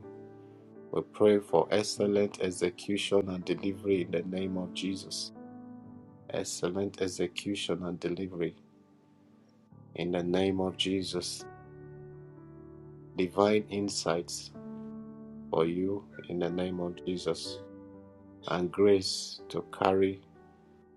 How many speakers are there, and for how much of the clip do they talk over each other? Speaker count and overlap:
one, no overlap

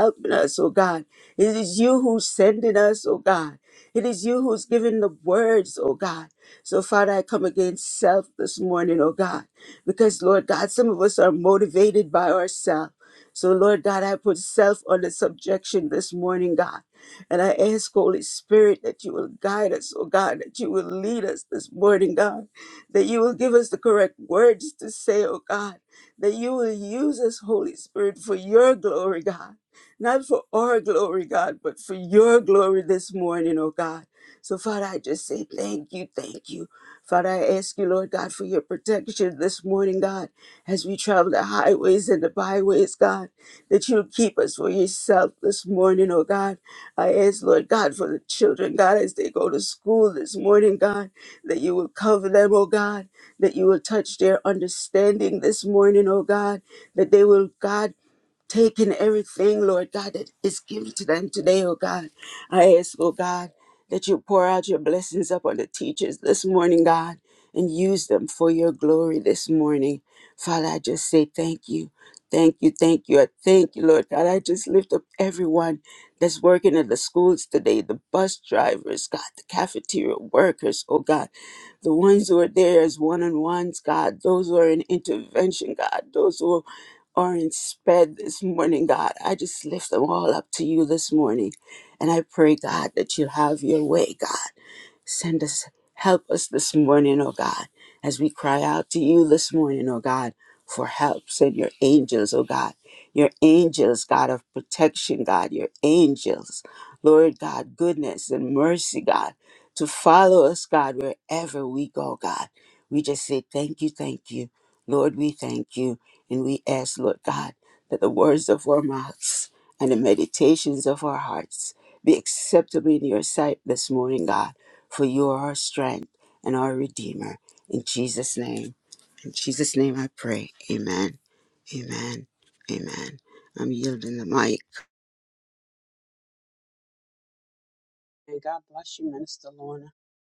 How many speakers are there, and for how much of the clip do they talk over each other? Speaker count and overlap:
two, no overlap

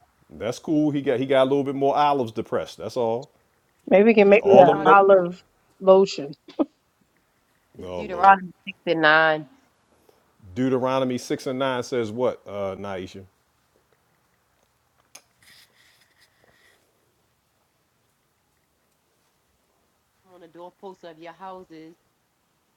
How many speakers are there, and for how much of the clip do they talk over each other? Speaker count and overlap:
three, about 6%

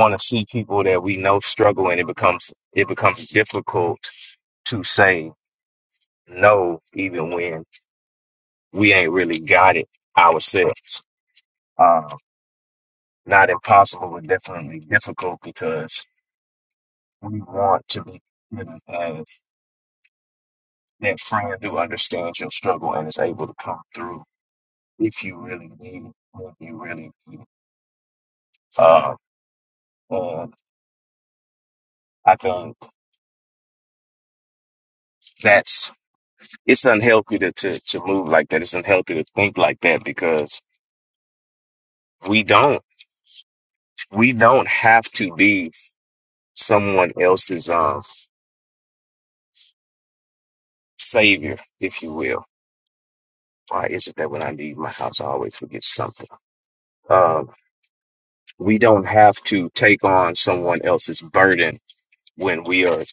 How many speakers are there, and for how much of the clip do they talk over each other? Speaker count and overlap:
one, no overlap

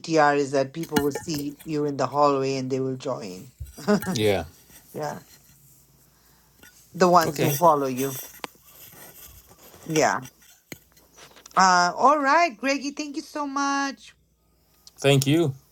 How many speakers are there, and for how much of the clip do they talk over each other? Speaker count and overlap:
two, about 2%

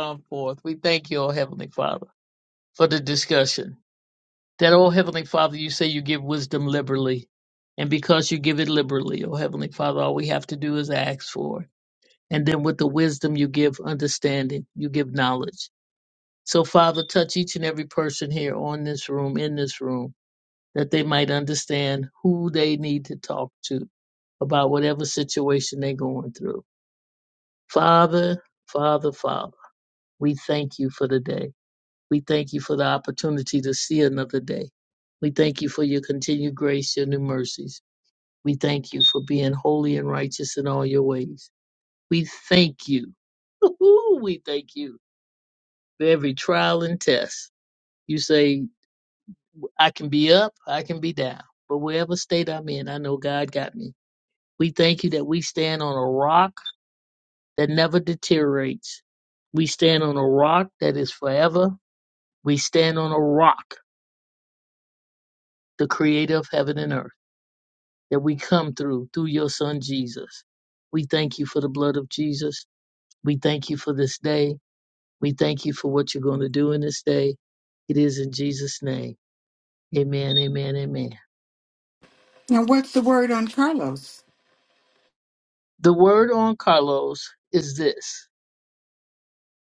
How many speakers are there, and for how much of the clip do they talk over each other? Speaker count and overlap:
two, no overlap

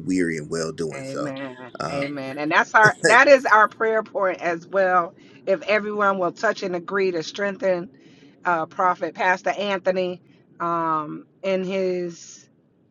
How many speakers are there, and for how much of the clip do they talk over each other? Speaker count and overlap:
two, about 6%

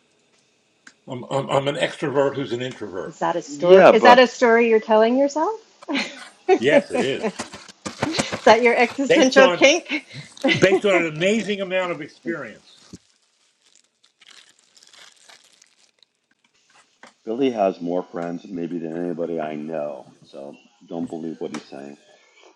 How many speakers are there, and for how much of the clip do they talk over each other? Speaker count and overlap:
three, about 7%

